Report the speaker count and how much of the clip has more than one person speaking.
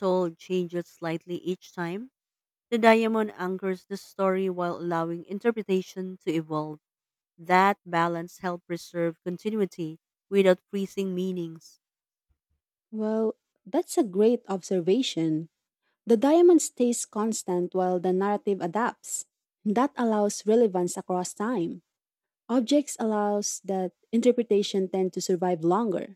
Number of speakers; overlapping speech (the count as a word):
two, no overlap